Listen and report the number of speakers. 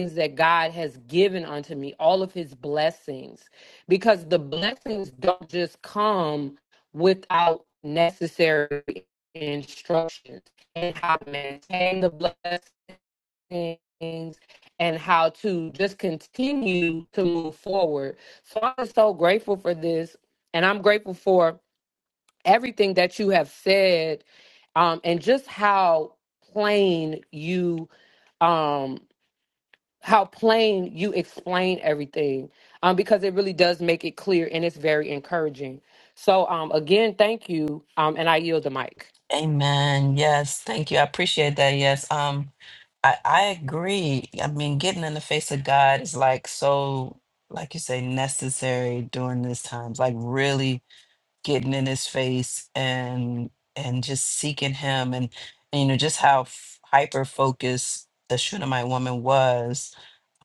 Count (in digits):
2